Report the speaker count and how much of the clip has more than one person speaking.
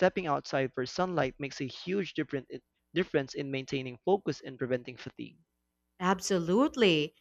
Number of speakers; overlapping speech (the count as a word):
two, no overlap